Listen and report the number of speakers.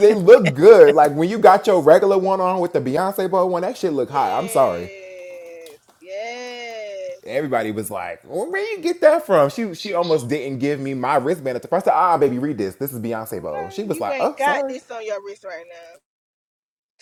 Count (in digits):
2